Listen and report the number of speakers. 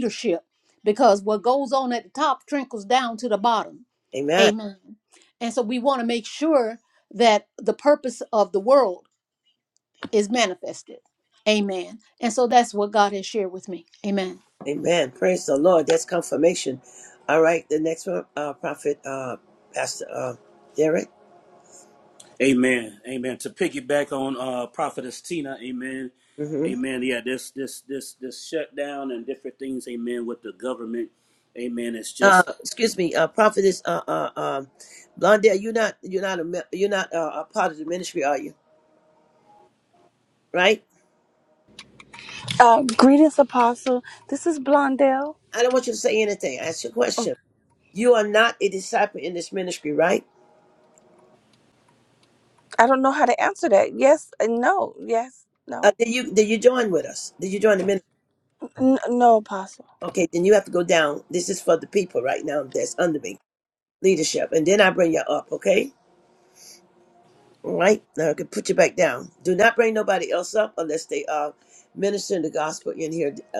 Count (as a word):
four